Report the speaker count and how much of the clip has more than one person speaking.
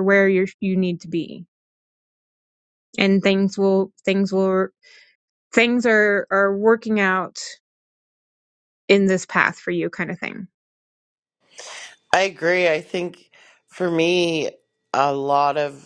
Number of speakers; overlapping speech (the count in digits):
2, no overlap